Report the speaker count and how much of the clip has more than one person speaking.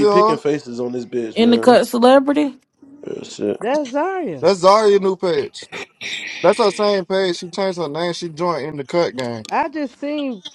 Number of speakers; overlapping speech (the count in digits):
4, about 8%